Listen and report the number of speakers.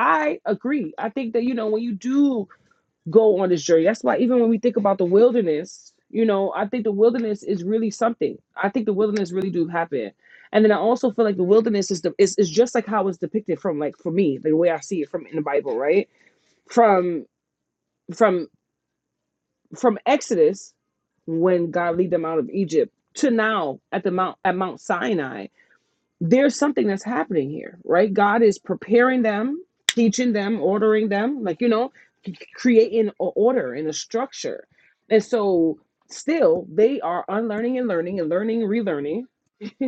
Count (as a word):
one